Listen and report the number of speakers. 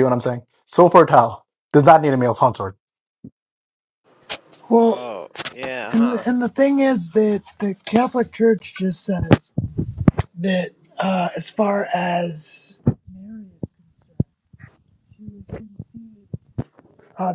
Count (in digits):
3